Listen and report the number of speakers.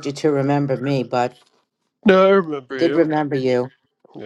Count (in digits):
2